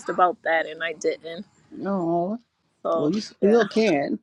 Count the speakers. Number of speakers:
two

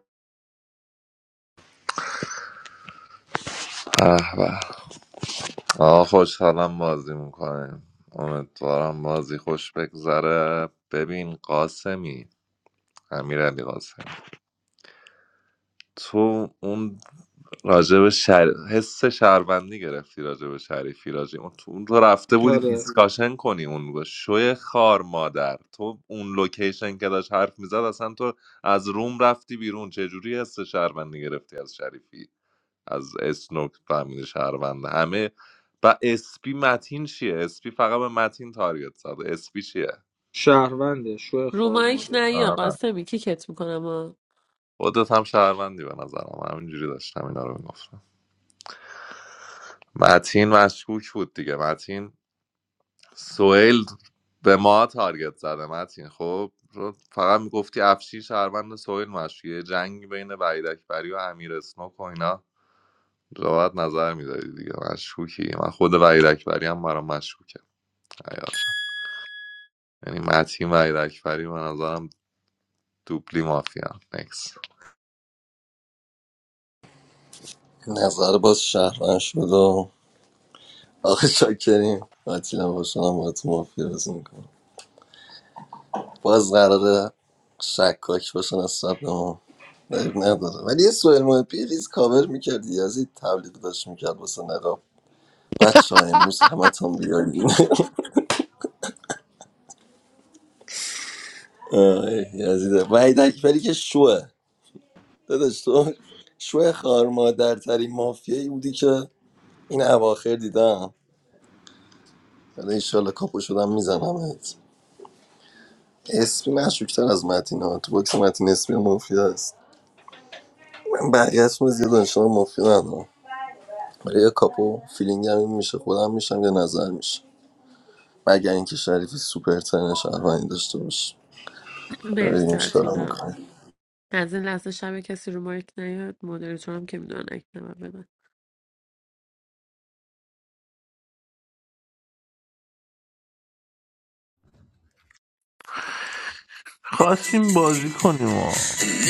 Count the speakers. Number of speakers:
five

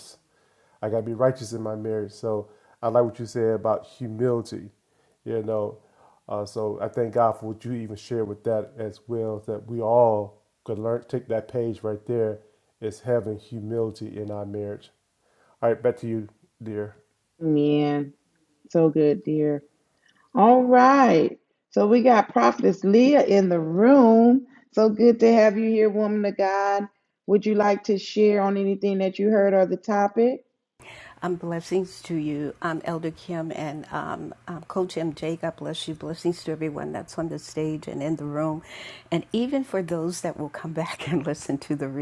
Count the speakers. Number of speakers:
three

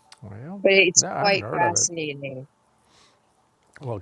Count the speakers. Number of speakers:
two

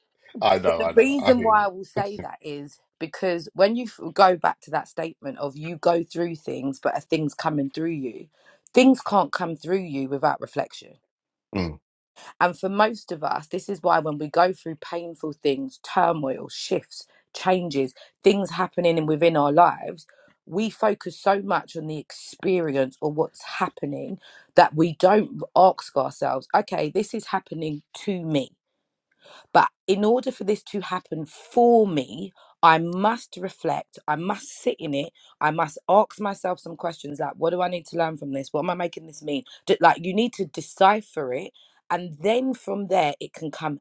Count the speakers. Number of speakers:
two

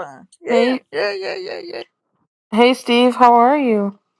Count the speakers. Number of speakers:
two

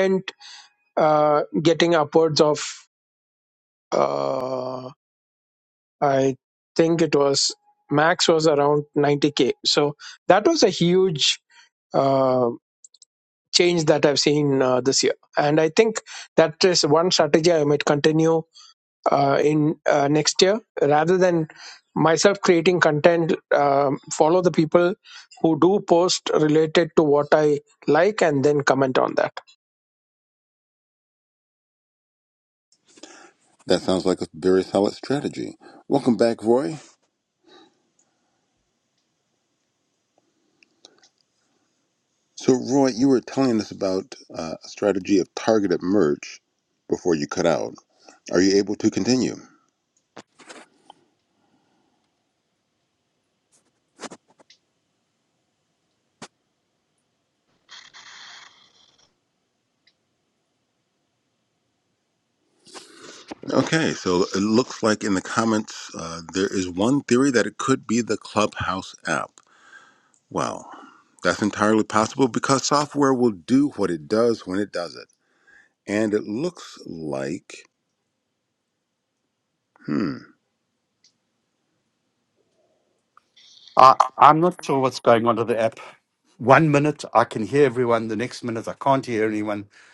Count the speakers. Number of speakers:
three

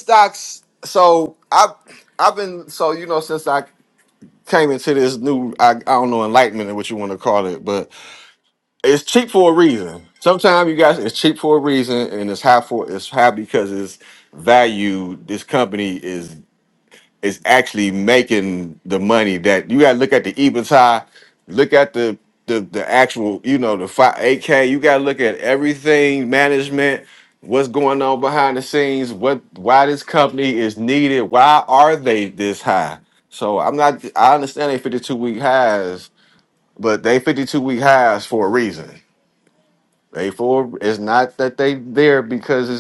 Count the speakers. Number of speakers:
one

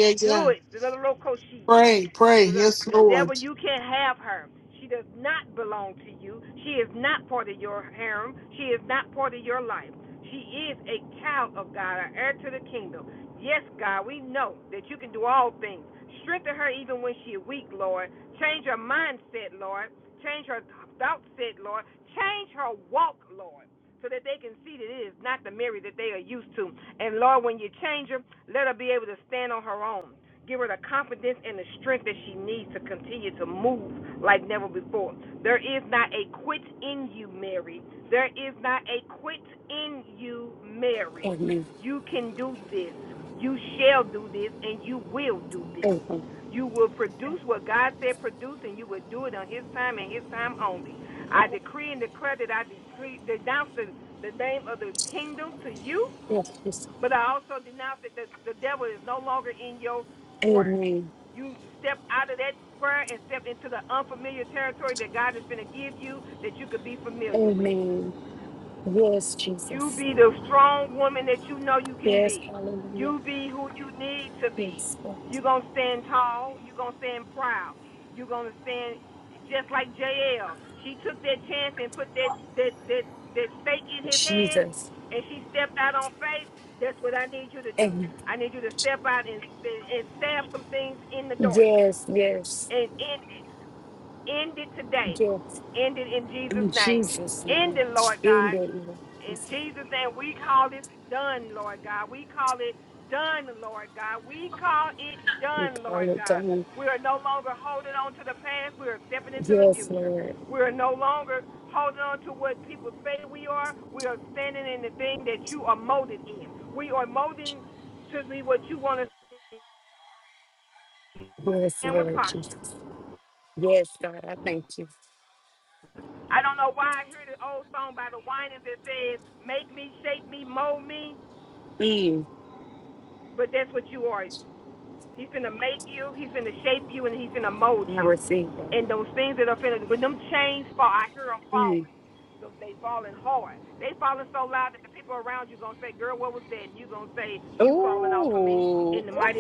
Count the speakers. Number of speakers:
three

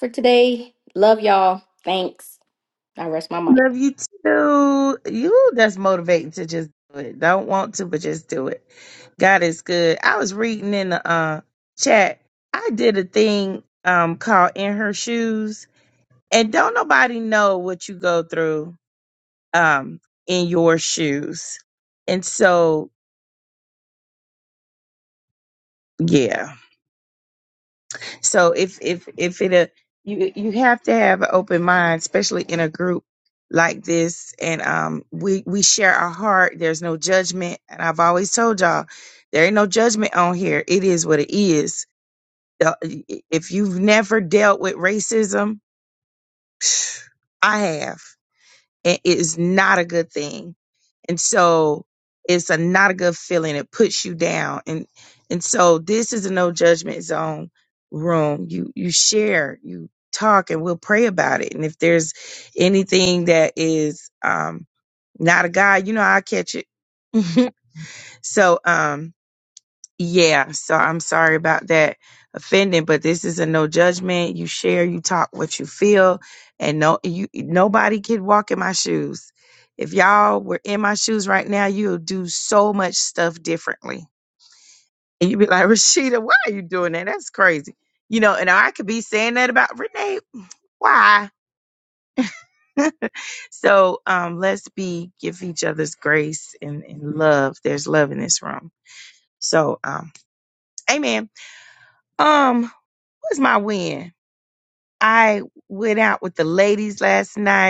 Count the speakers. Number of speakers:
two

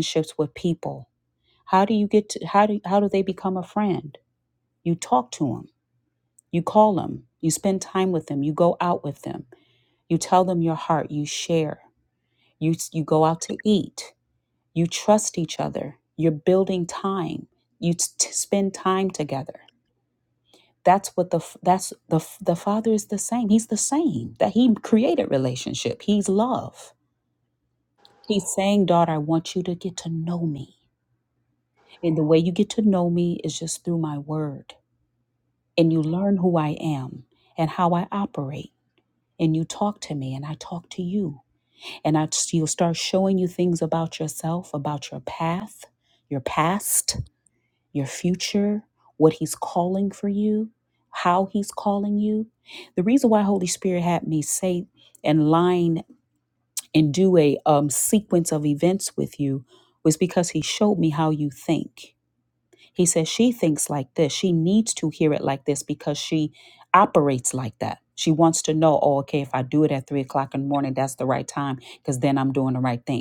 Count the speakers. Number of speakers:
one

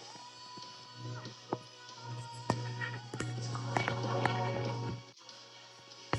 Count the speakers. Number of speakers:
zero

